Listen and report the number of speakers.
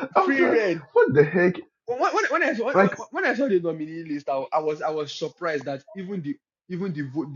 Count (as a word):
two